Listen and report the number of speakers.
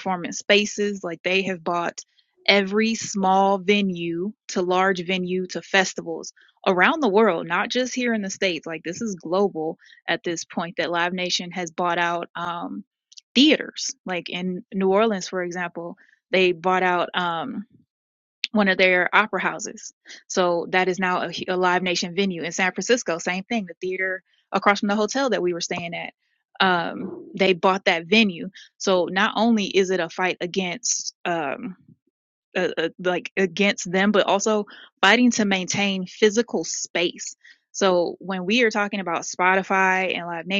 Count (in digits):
1